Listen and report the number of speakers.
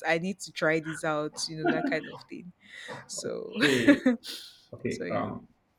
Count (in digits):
2